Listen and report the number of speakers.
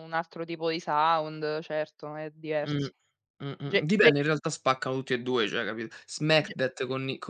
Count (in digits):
2